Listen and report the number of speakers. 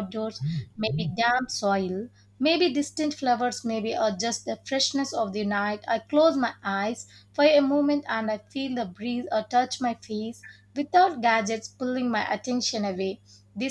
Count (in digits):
1